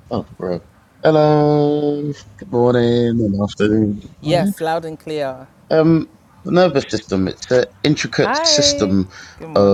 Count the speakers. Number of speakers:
2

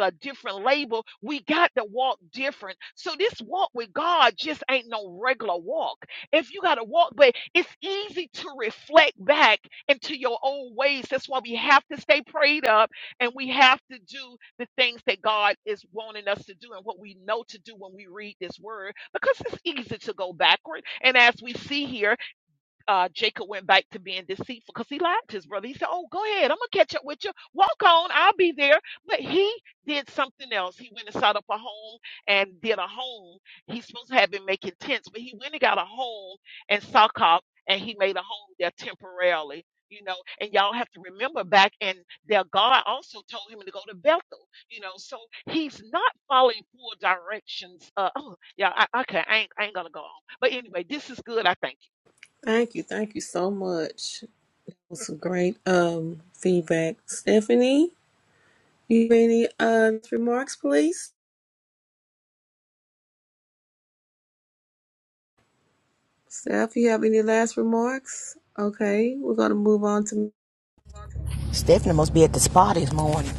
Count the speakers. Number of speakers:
3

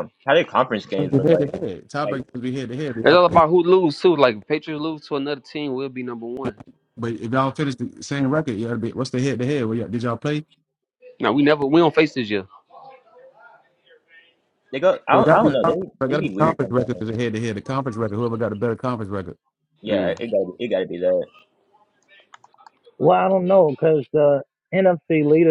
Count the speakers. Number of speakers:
4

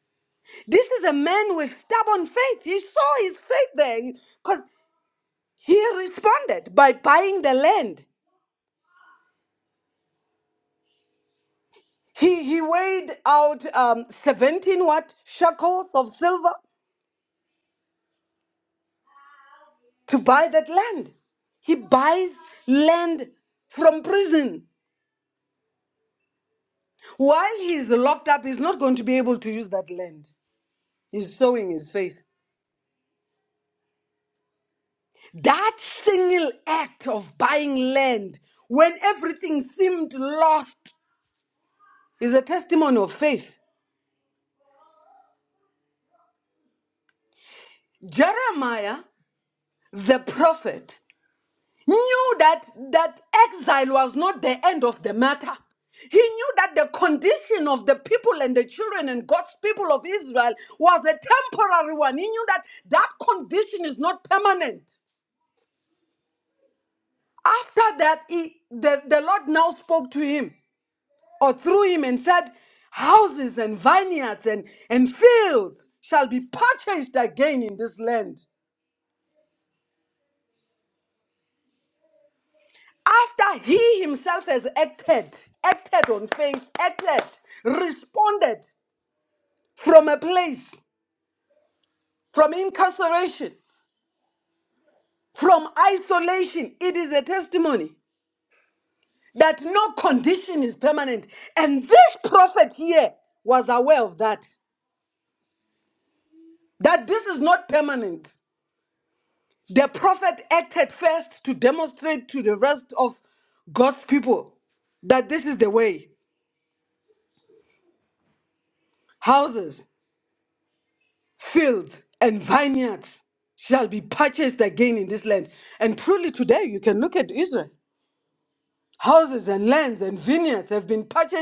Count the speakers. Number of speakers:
1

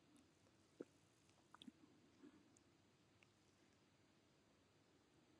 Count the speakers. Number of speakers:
0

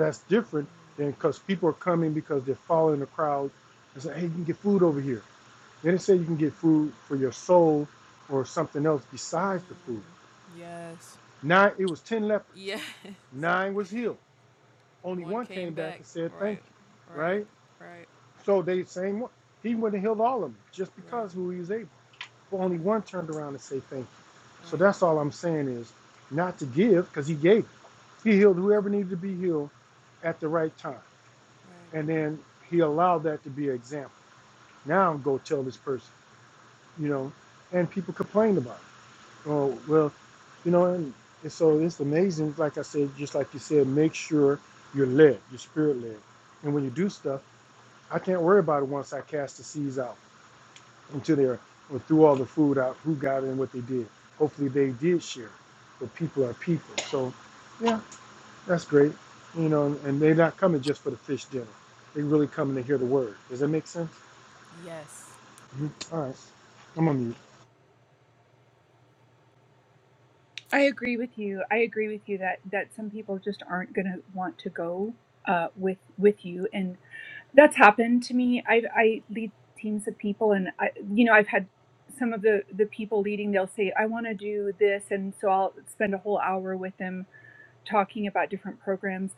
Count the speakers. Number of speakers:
3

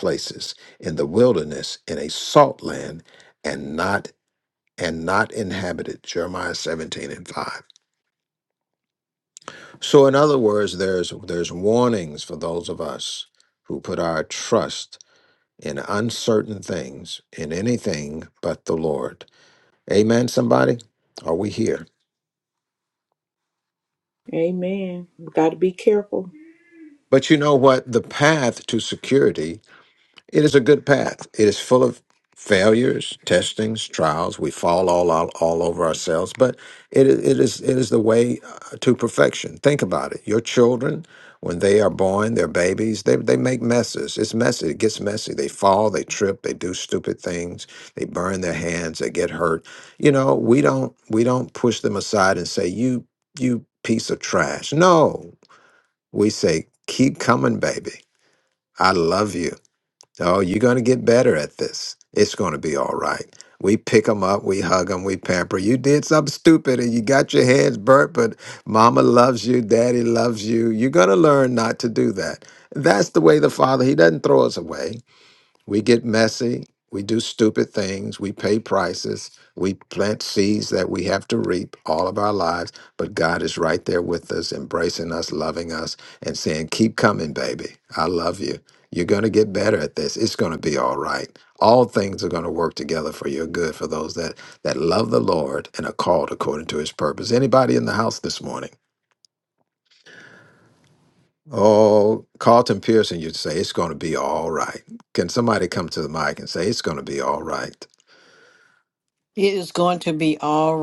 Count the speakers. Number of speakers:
3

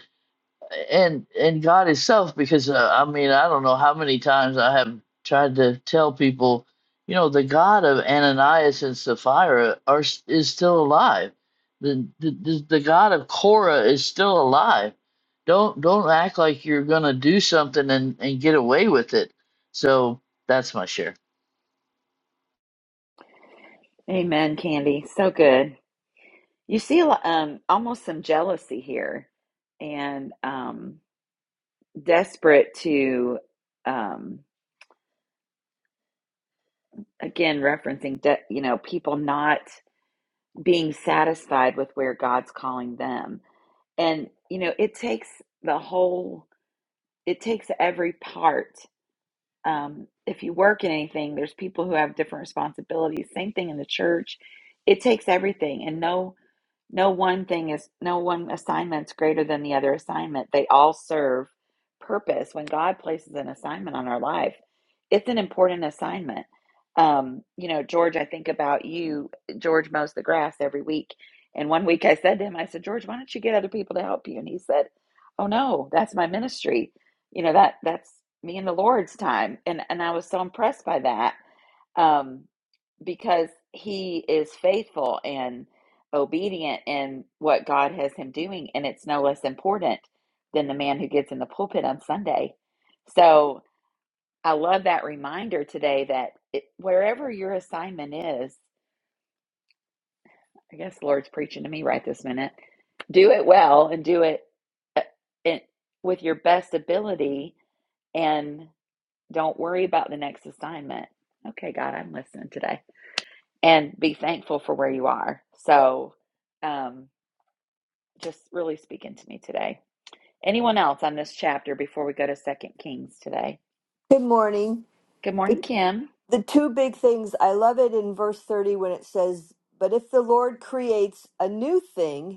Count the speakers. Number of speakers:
3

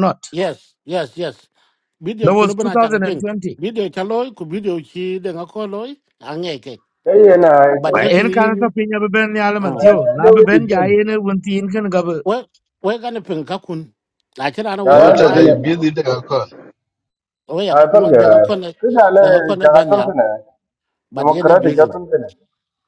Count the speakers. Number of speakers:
4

